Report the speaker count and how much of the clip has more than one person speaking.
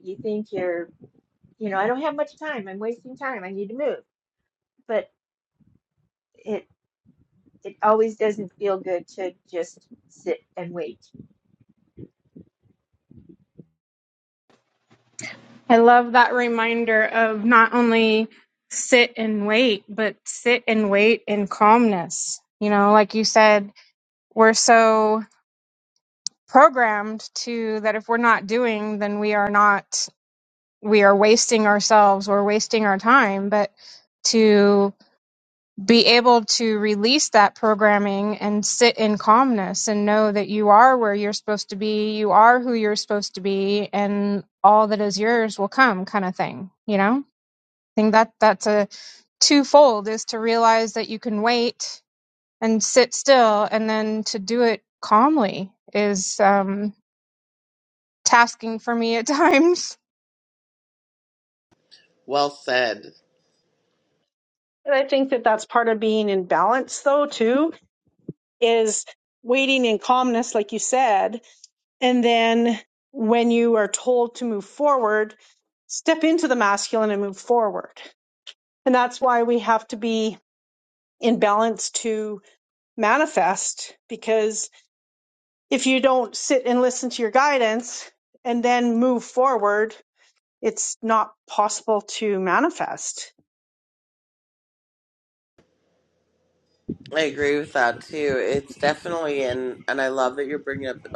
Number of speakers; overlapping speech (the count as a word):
four, no overlap